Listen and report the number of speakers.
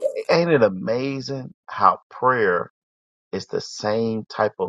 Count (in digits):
1